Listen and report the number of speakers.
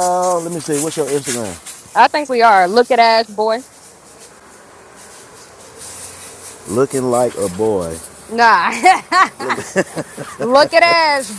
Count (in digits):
2